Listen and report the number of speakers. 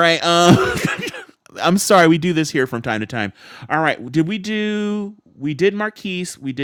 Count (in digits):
1